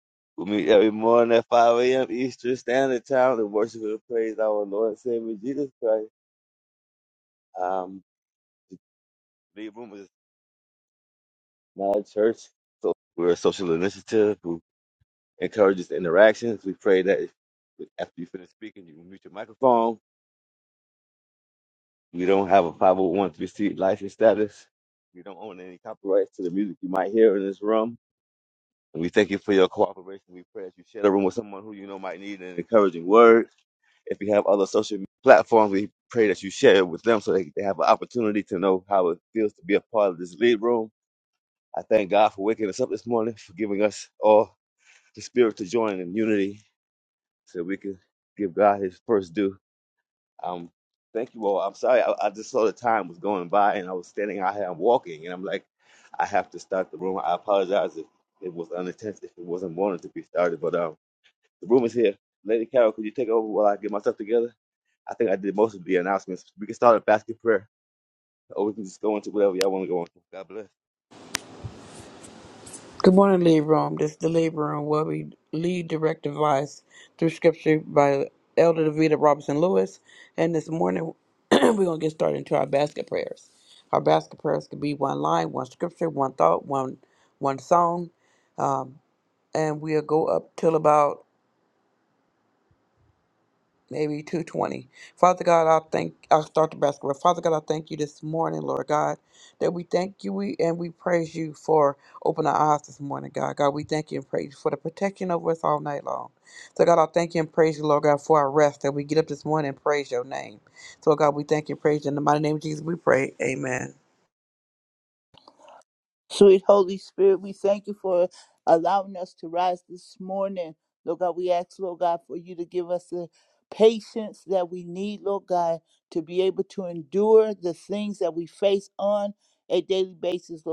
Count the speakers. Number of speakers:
3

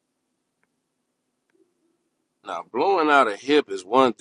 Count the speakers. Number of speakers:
1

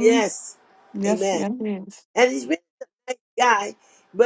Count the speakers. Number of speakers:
2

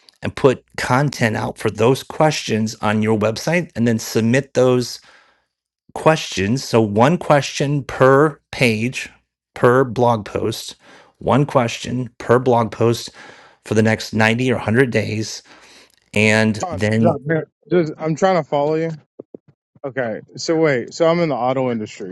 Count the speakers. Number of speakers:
2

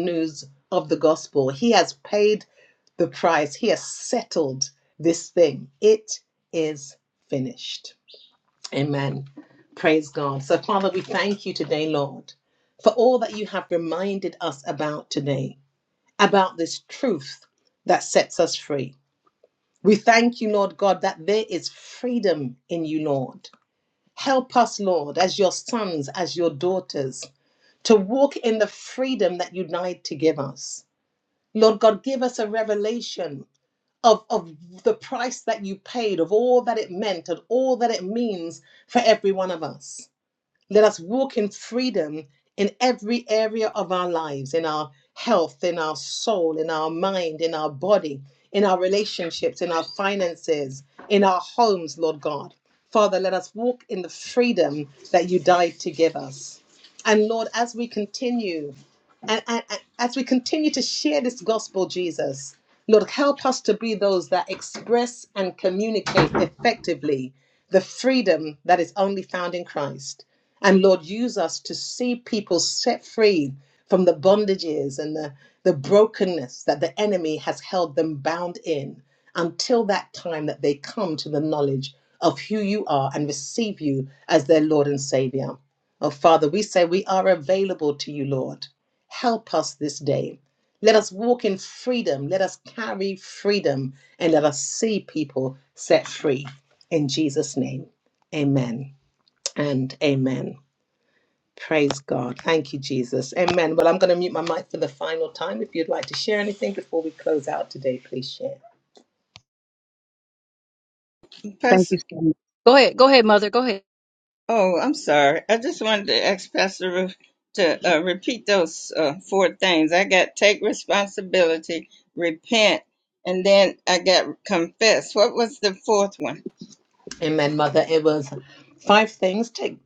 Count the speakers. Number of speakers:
3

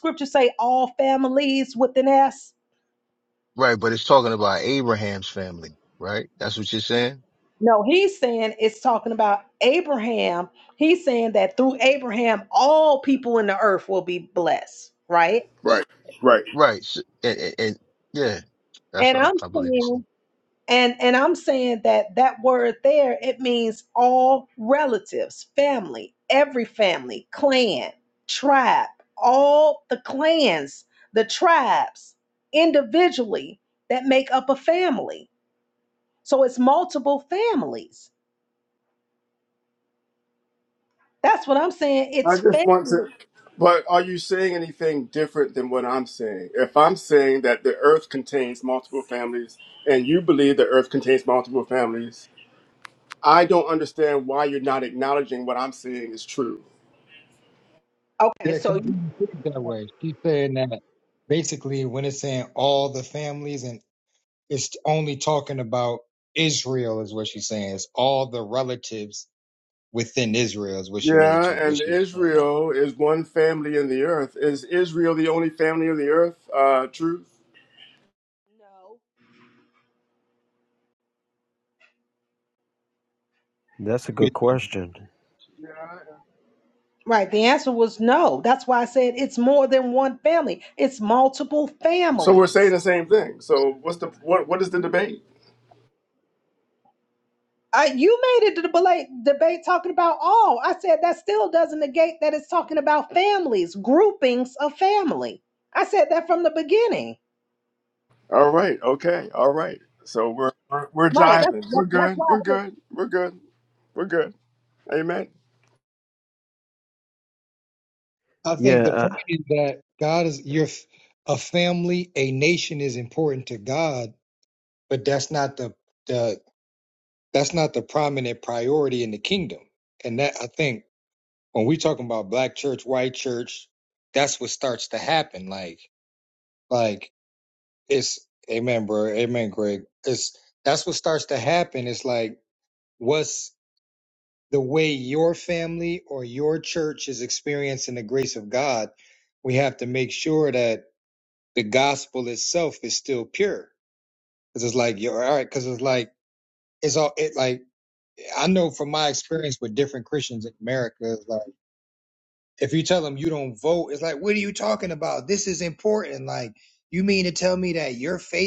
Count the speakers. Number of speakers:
5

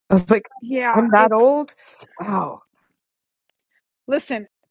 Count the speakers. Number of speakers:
2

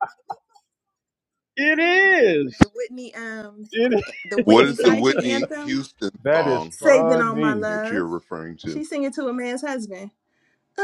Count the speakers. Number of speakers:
3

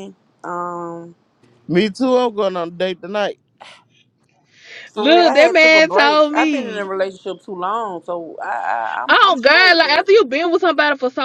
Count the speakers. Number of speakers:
3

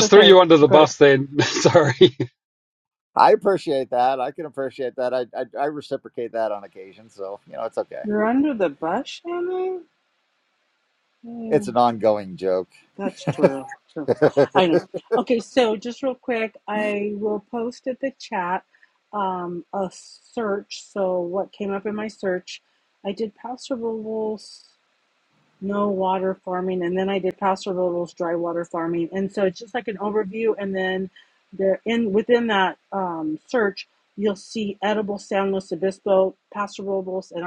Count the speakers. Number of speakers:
3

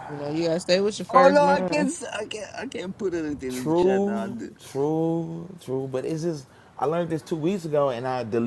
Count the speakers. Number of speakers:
3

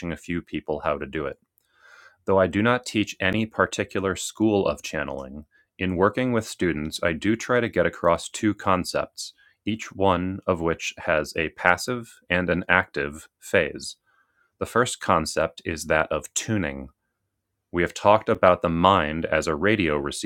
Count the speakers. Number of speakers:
1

